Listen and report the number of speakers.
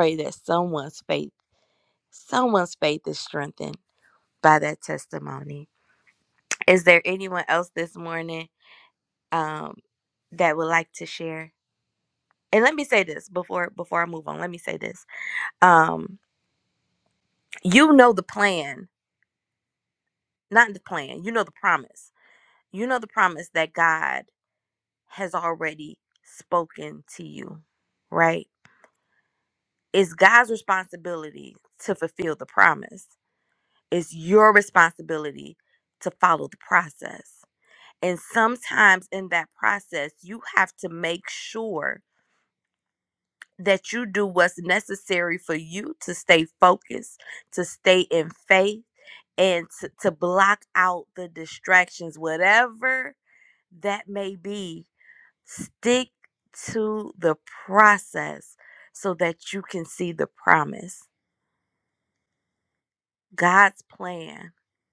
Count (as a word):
one